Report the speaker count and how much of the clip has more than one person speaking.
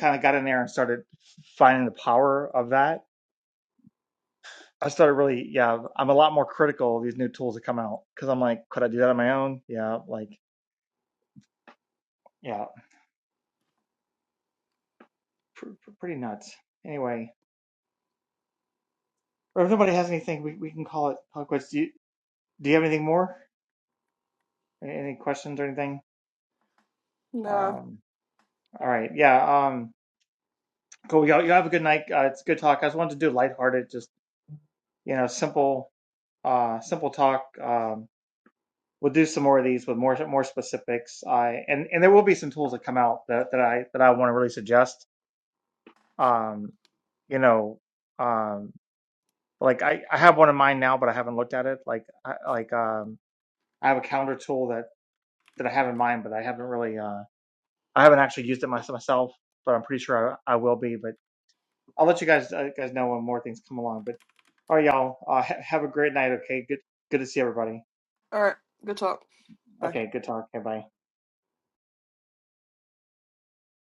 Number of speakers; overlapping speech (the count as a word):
two, about 1%